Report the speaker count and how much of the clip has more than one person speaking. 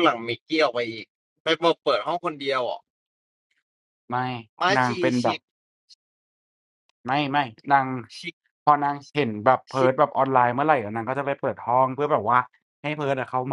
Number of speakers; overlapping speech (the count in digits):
2, about 5%